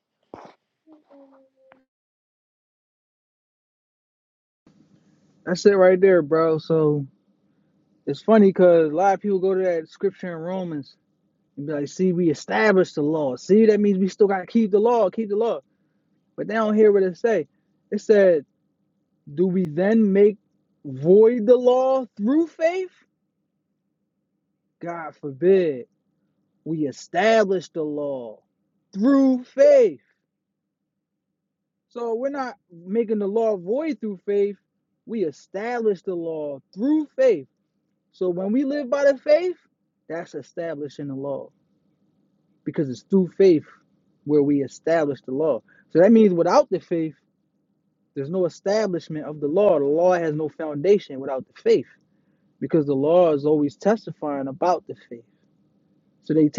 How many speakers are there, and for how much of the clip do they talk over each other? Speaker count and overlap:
one, no overlap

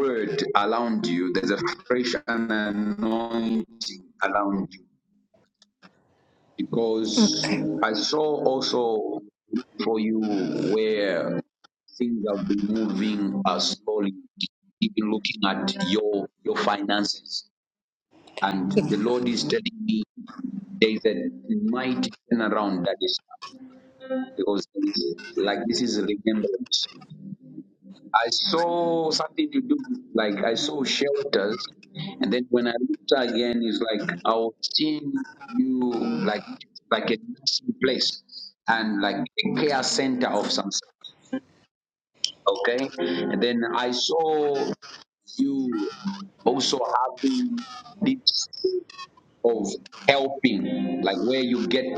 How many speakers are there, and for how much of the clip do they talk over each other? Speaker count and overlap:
one, no overlap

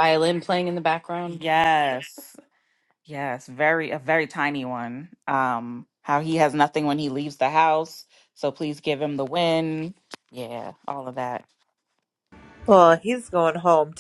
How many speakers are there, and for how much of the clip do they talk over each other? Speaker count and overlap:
three, about 1%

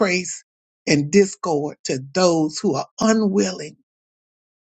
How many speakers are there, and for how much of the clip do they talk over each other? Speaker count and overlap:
one, no overlap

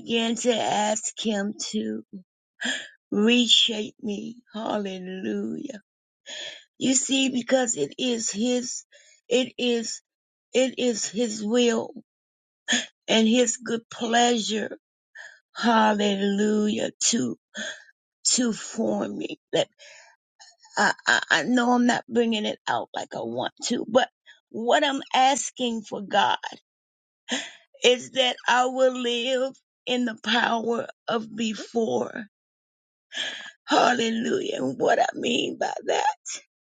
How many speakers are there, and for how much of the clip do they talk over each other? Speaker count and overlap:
one, no overlap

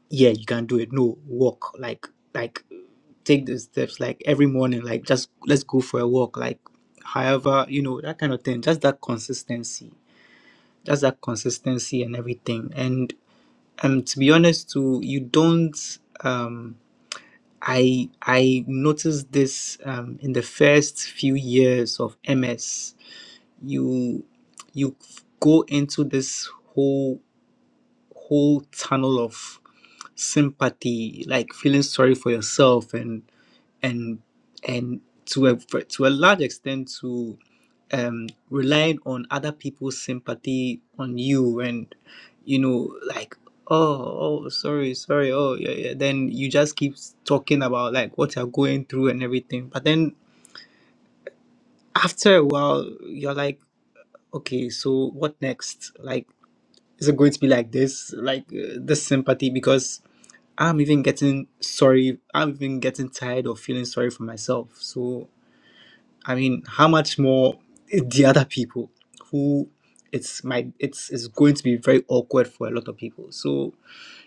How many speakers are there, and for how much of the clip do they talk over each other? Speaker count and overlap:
one, no overlap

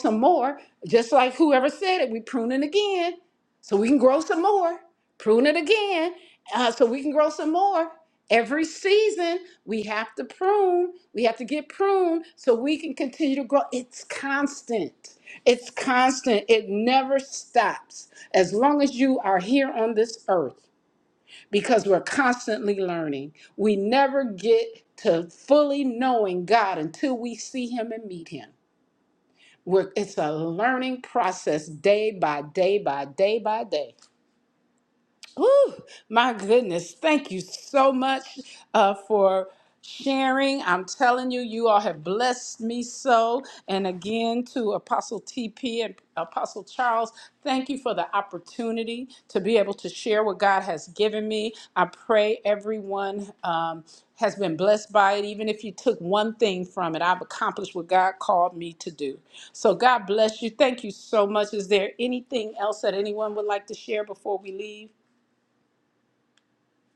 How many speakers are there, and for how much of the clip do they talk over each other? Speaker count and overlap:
one, no overlap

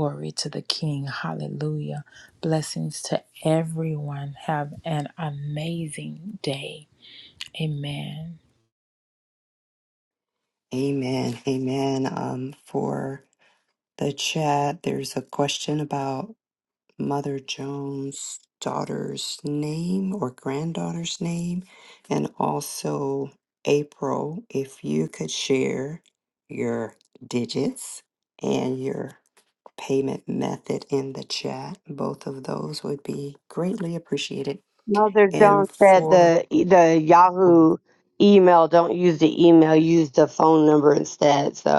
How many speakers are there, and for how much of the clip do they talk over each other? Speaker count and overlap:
three, about 3%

